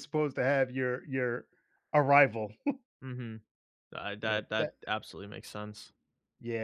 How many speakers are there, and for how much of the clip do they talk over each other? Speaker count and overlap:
2, about 7%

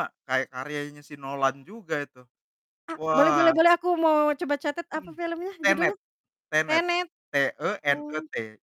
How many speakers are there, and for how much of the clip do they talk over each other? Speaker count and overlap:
2, about 17%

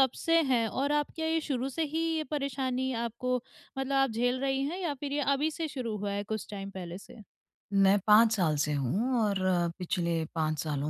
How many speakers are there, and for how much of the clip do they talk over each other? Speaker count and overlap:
2, no overlap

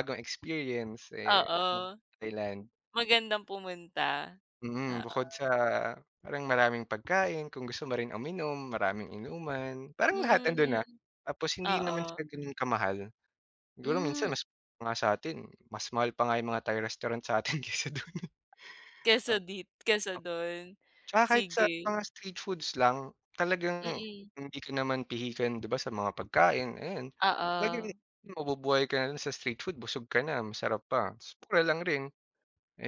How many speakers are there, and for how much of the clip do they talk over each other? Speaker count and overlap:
2, about 12%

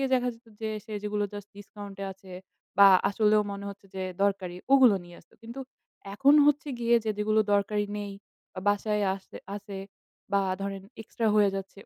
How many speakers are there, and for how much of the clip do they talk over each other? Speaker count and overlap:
1, no overlap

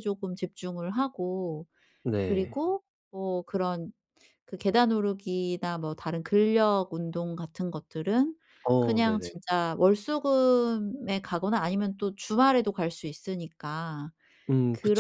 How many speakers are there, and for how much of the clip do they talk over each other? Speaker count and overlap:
2, about 8%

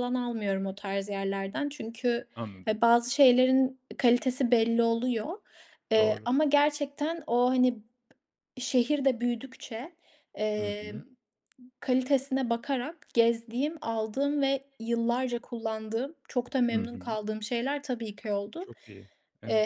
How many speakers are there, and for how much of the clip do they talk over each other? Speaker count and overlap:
2, about 6%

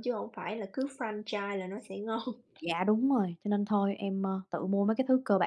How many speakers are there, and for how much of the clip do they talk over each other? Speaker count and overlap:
2, no overlap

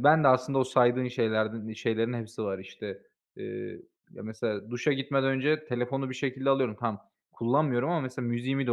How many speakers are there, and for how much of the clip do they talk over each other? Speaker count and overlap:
1, no overlap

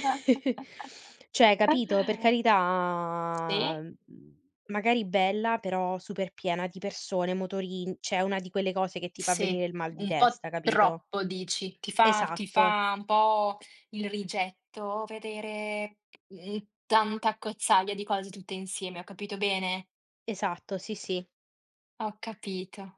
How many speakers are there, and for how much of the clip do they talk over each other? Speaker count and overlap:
2, about 9%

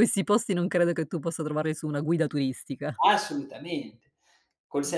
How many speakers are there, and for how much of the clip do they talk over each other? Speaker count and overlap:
2, no overlap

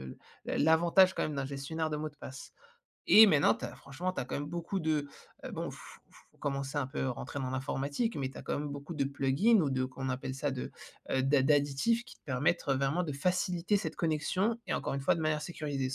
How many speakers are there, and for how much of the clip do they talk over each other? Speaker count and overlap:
1, no overlap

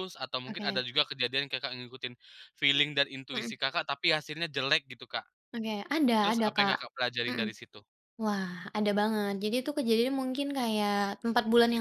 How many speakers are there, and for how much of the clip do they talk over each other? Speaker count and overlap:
2, about 11%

